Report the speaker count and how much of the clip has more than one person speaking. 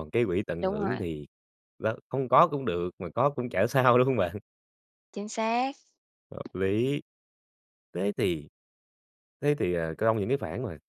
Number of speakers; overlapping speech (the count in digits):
2, about 4%